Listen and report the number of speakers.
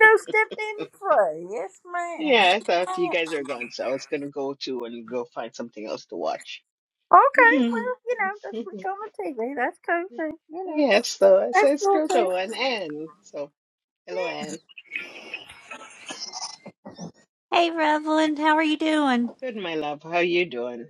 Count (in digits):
3